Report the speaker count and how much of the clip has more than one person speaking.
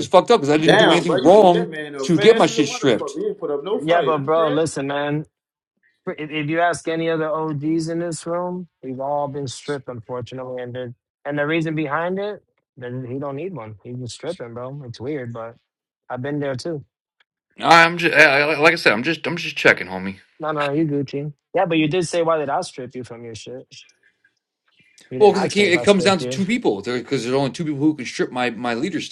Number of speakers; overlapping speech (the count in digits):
3, about 14%